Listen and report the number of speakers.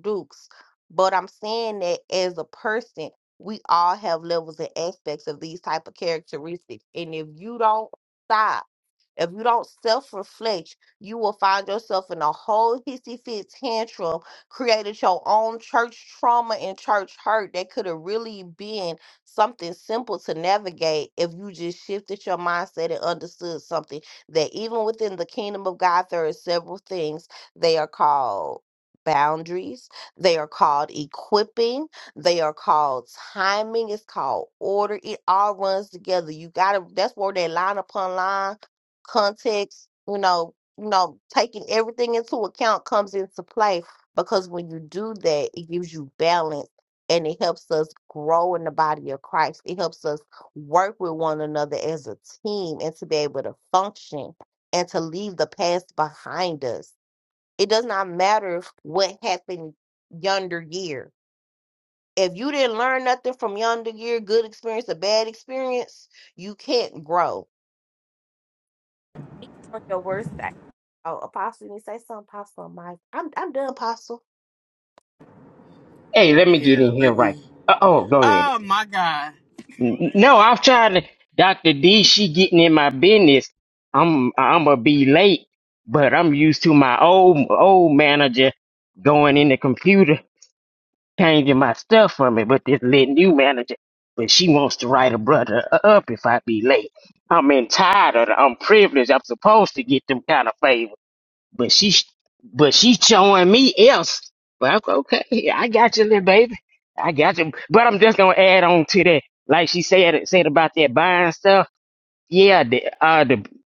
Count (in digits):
3